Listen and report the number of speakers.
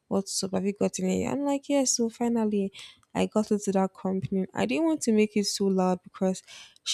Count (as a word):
one